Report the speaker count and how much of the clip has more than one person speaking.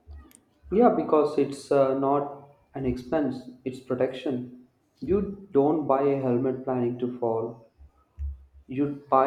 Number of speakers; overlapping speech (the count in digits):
1, no overlap